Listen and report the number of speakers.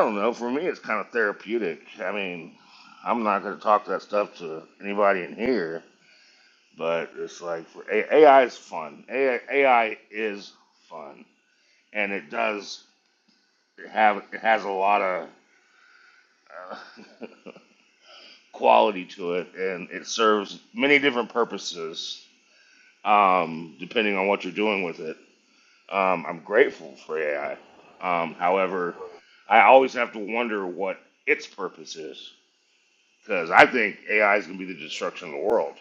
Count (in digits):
1